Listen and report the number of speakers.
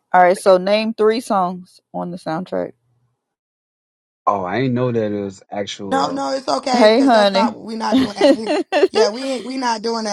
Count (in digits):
3